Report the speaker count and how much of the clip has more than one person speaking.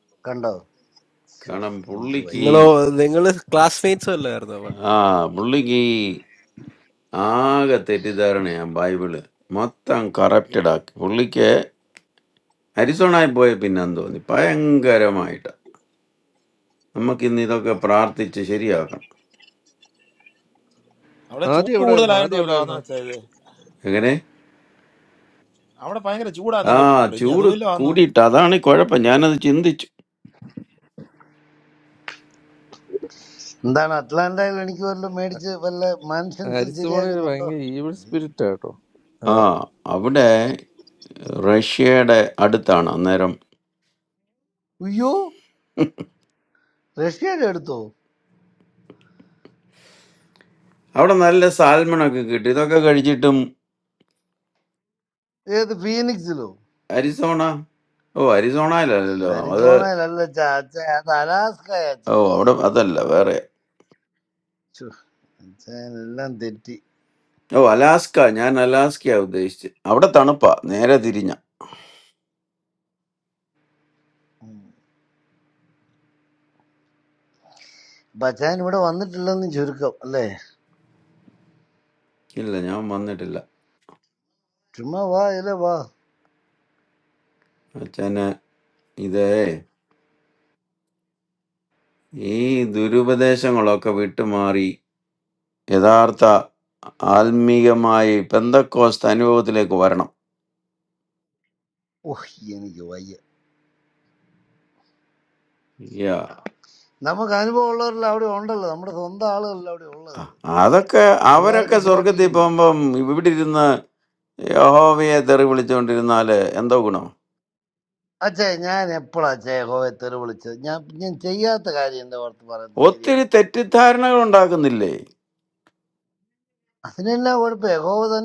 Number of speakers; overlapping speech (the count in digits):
5, about 5%